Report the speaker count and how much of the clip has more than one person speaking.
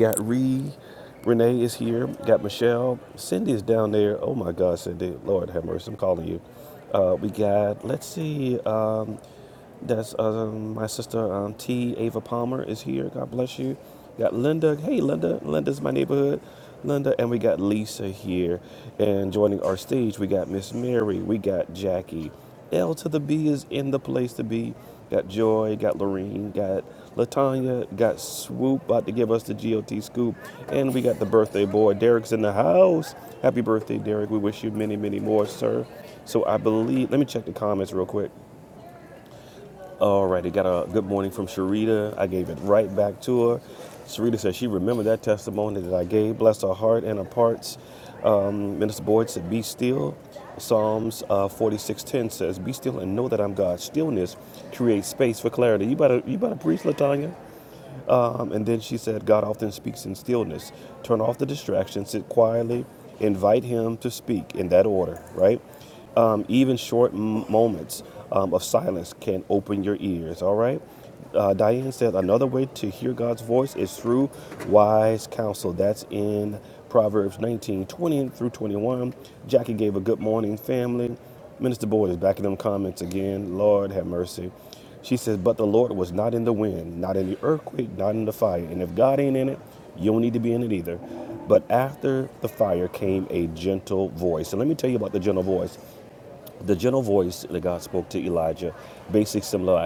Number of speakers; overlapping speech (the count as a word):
one, no overlap